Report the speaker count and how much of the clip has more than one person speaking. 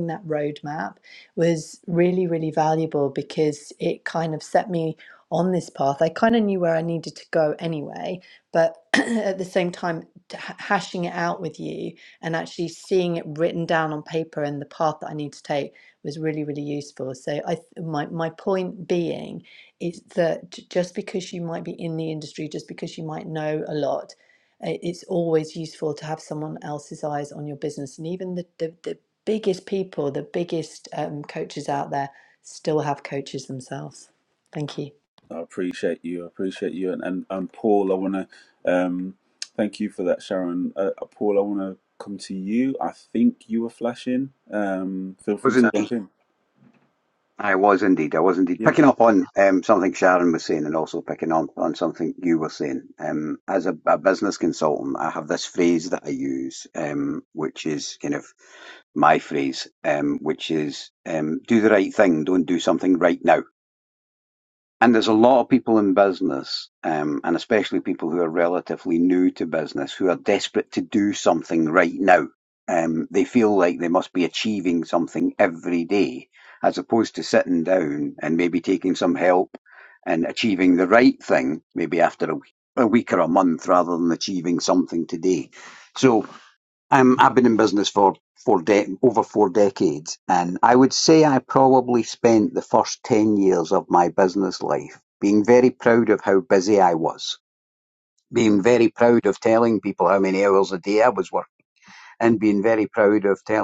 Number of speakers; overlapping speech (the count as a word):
three, under 1%